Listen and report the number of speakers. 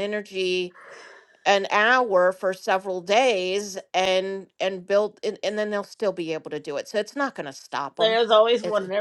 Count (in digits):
2